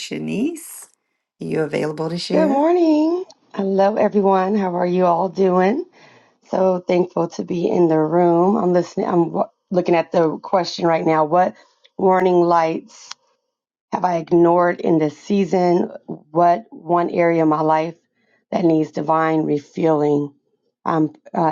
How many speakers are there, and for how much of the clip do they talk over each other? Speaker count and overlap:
2, about 1%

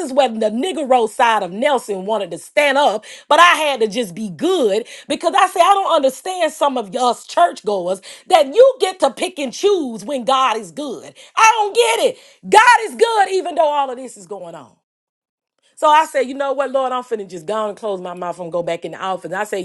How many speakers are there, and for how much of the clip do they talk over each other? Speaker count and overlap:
1, no overlap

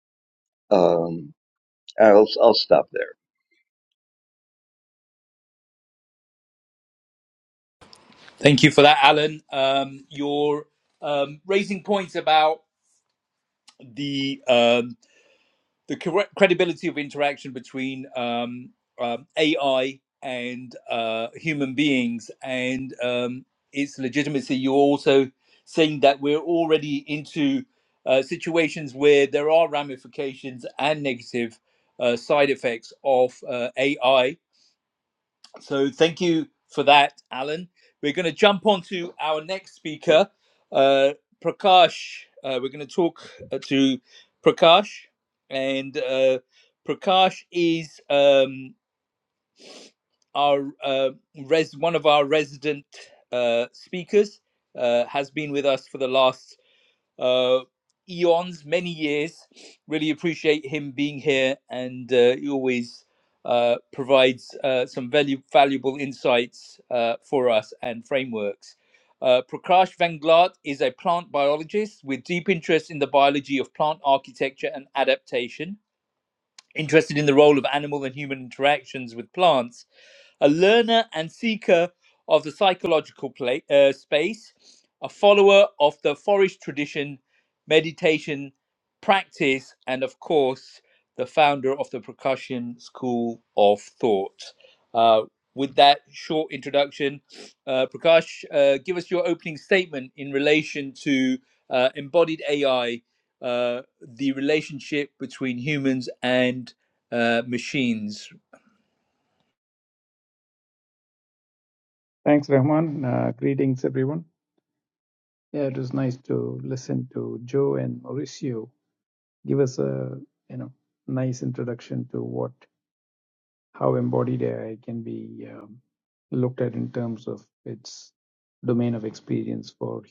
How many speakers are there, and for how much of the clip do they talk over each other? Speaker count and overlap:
3, no overlap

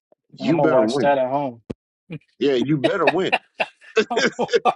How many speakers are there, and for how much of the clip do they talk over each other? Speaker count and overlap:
2, about 14%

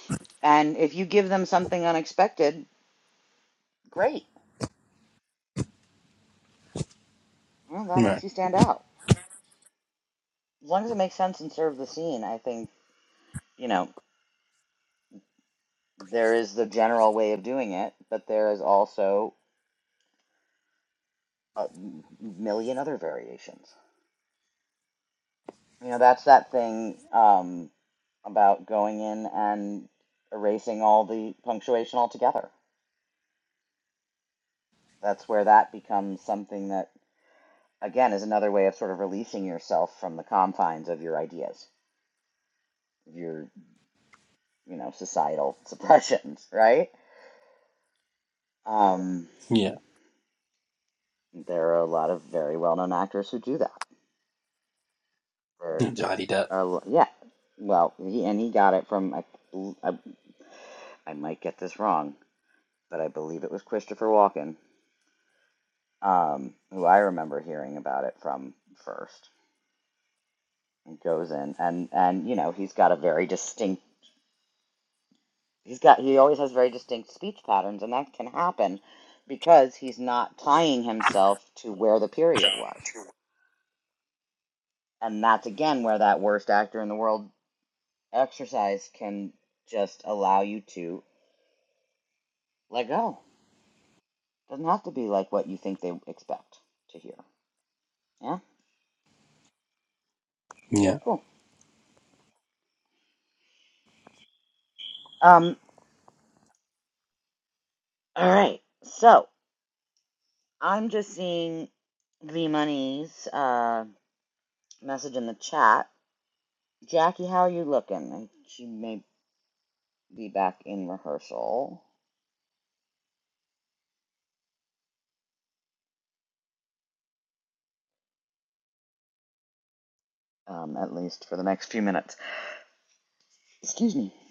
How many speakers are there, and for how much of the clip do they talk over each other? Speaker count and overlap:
2, under 1%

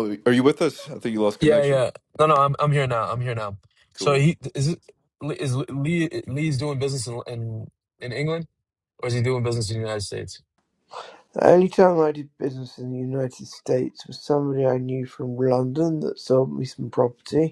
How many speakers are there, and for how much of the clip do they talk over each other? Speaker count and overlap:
3, about 3%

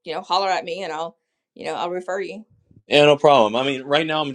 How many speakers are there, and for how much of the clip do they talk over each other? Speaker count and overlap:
2, no overlap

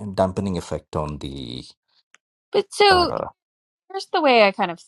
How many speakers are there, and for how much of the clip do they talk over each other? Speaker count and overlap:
2, about 5%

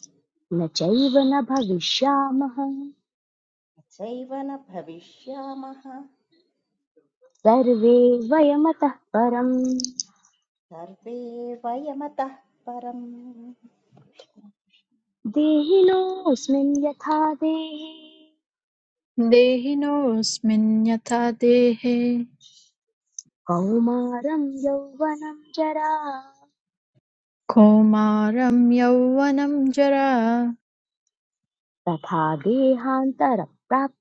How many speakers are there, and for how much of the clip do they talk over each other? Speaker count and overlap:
3, no overlap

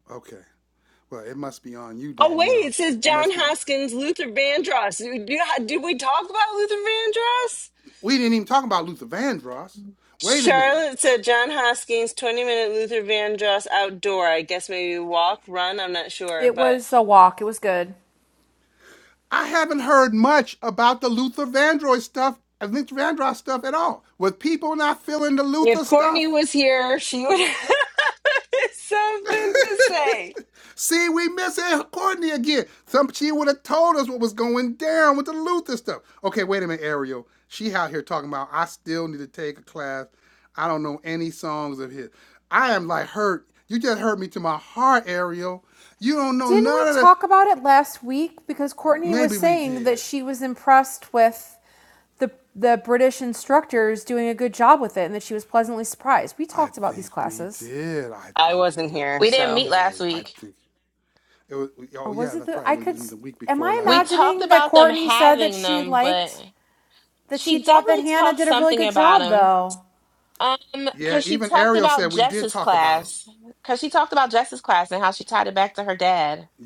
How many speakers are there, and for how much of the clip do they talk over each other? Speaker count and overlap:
4, about 19%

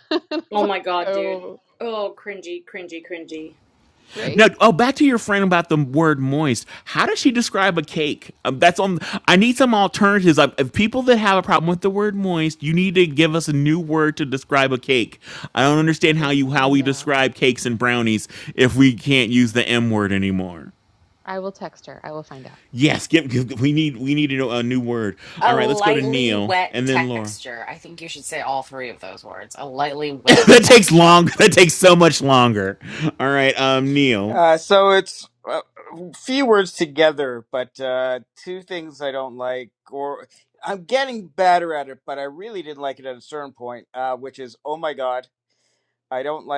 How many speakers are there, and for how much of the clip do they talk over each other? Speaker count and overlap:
5, about 11%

